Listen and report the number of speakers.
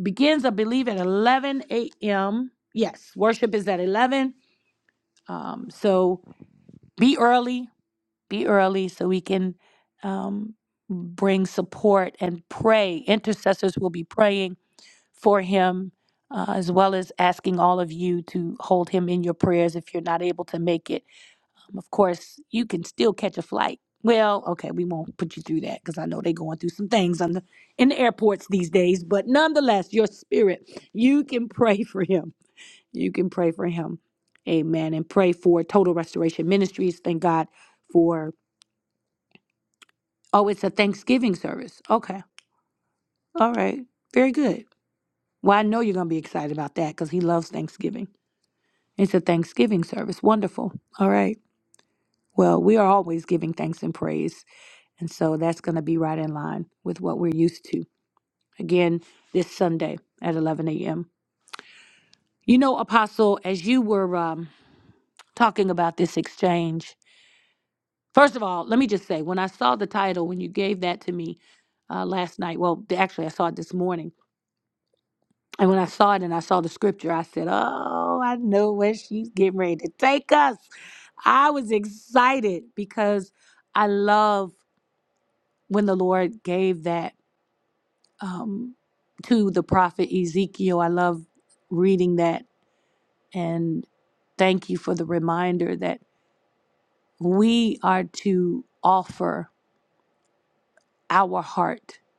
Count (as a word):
one